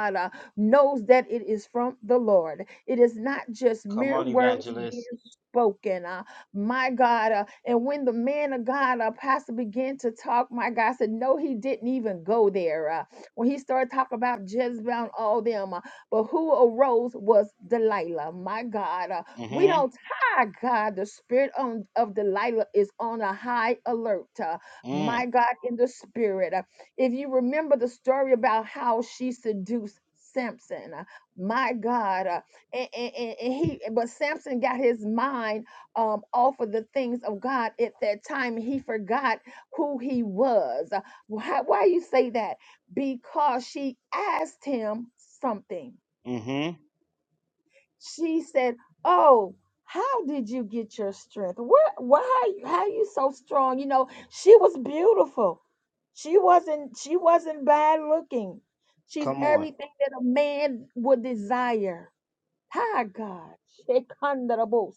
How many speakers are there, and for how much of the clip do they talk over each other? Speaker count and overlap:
2, about 4%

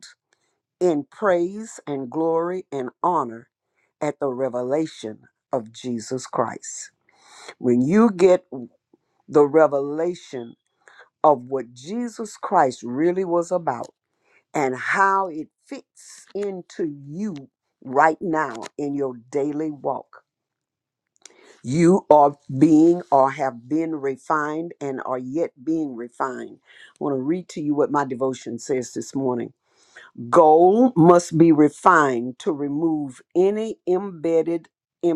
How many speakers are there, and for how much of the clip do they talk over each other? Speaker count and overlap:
1, no overlap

